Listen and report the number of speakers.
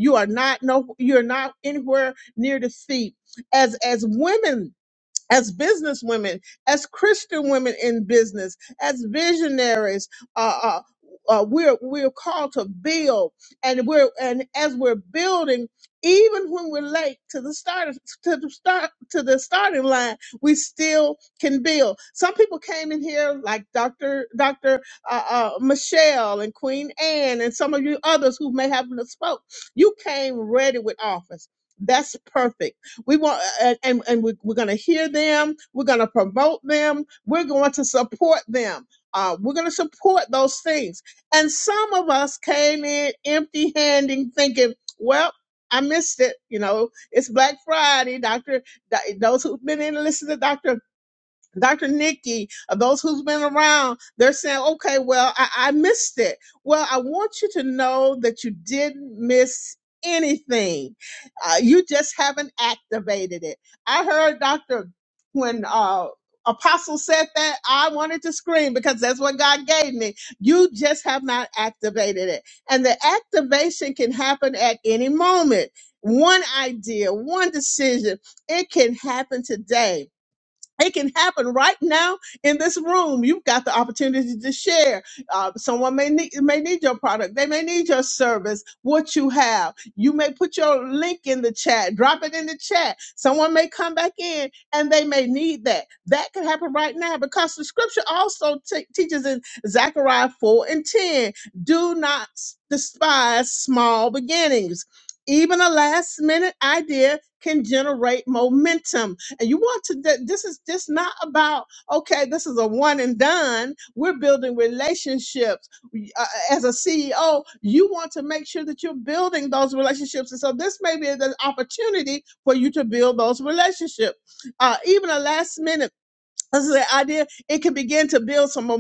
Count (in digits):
1